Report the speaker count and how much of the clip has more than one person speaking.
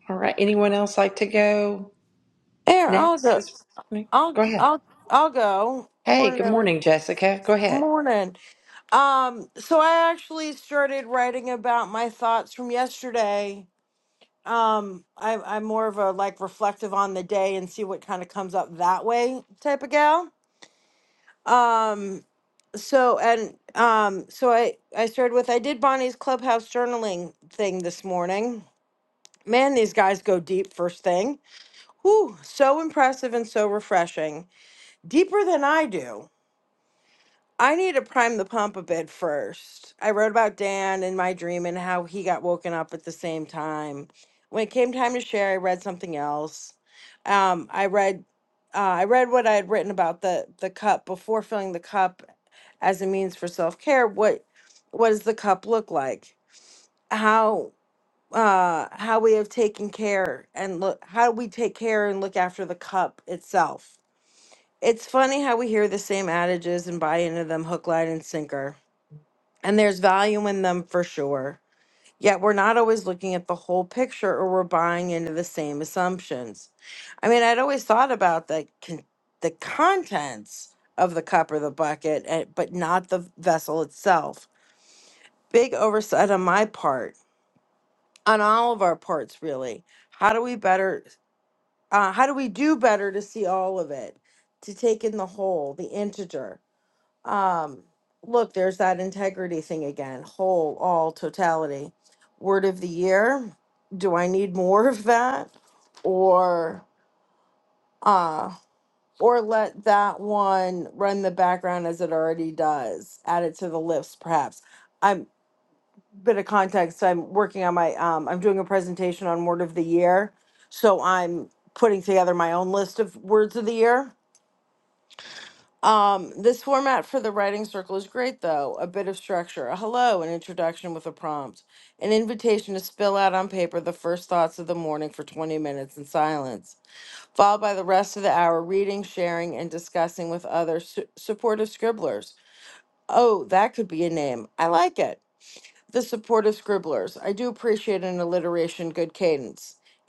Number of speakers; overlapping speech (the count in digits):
2, about 1%